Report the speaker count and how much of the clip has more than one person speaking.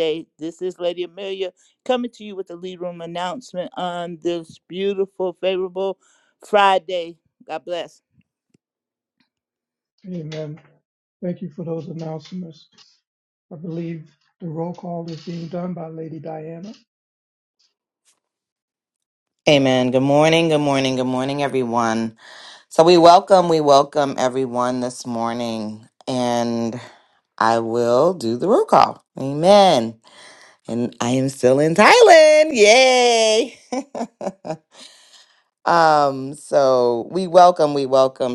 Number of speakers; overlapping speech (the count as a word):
three, no overlap